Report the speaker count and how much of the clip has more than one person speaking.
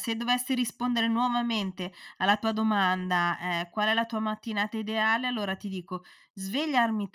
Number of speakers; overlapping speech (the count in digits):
1, no overlap